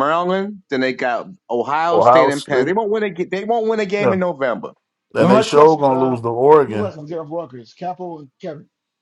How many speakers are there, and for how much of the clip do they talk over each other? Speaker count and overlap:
three, about 24%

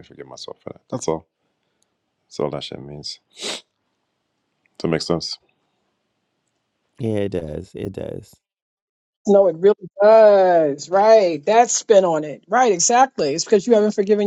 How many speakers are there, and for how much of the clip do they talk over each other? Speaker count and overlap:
three, no overlap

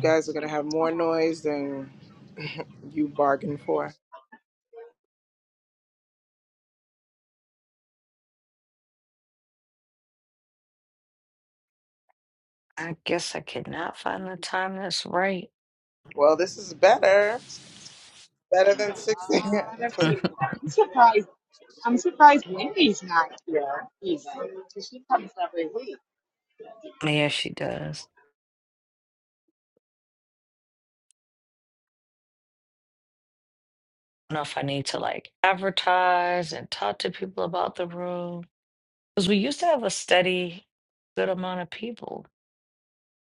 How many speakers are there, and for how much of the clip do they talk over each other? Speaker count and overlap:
three, about 4%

